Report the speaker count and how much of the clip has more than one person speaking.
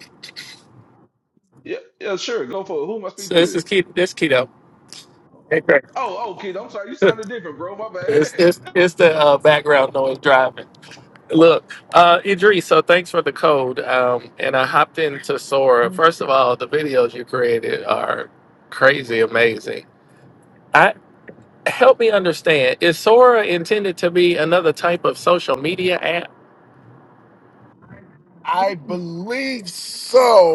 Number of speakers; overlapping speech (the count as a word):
three, about 3%